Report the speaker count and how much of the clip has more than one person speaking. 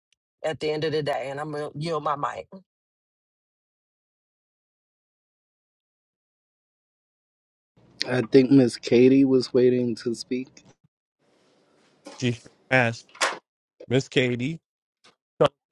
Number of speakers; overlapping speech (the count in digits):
3, no overlap